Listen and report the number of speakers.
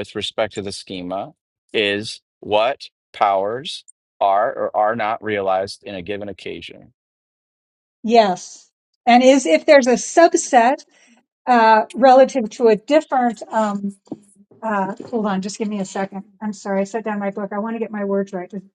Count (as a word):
two